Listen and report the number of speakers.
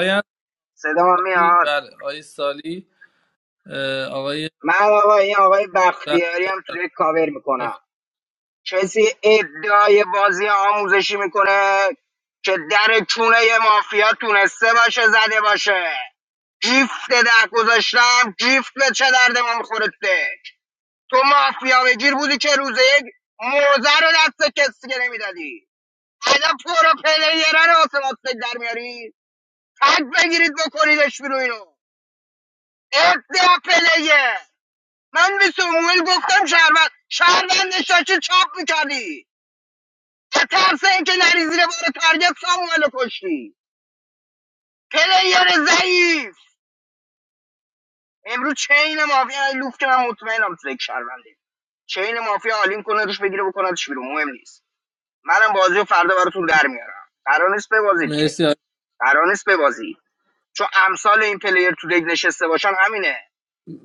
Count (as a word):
two